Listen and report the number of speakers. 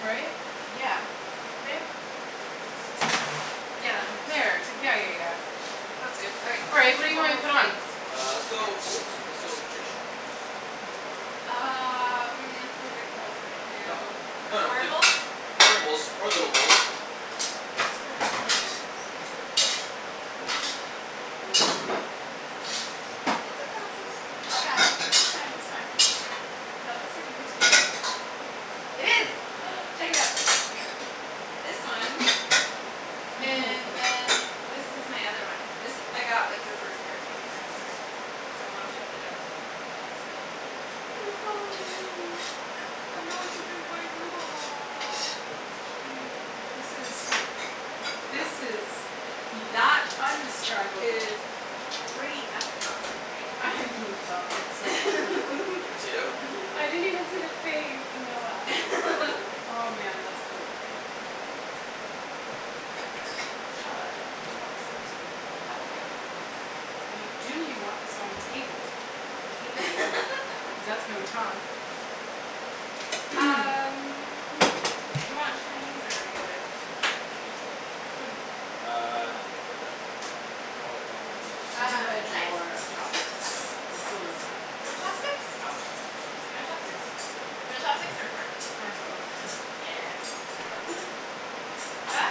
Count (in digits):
3